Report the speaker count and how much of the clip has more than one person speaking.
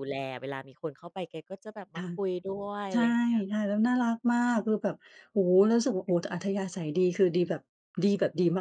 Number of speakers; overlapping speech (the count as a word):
two, about 8%